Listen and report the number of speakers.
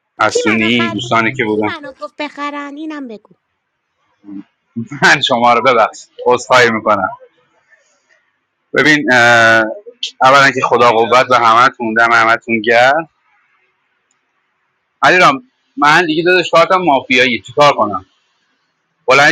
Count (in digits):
2